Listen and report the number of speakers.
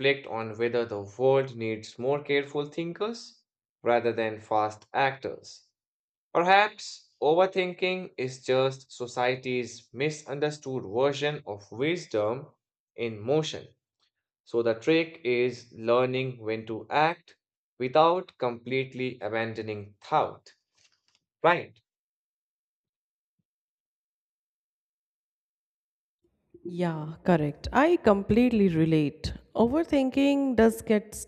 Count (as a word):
two